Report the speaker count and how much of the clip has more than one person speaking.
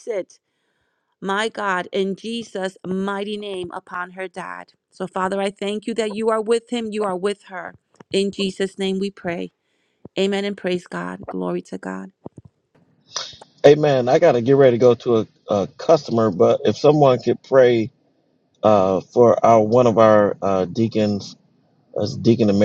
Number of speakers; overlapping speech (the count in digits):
2, no overlap